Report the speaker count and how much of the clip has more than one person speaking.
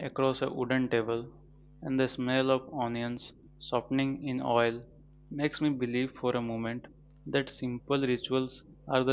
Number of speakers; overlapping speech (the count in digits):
1, no overlap